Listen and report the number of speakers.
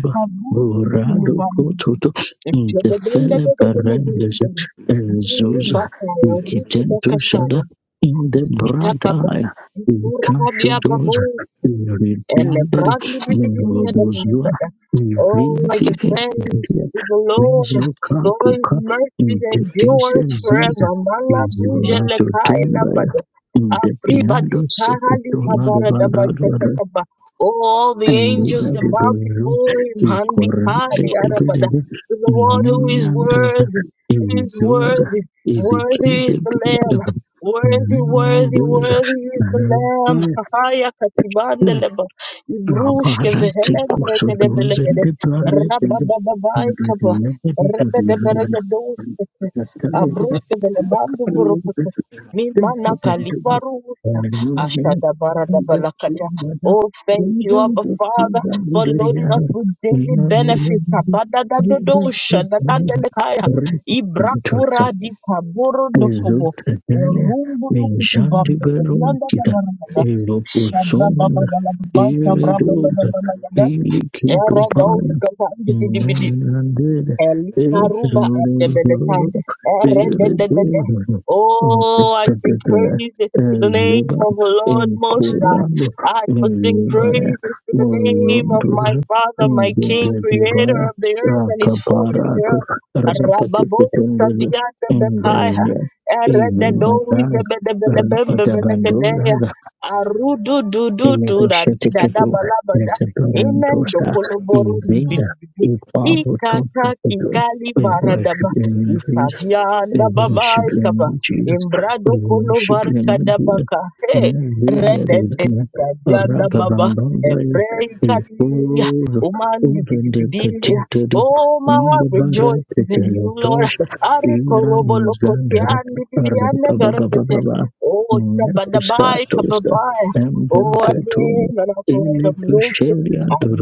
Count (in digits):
2